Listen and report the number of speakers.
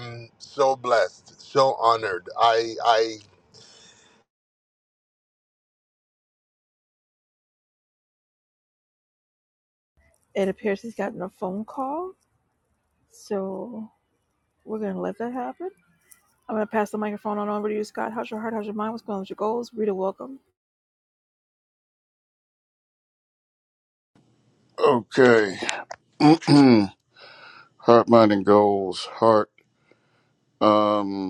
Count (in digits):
3